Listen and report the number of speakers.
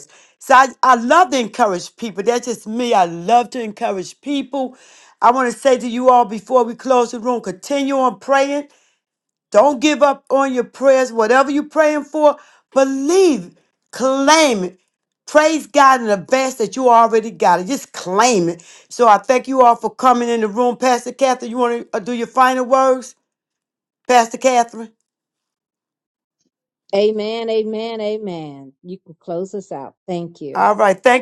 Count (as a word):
two